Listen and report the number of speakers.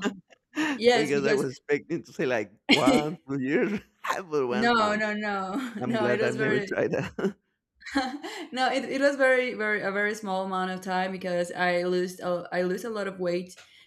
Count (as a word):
two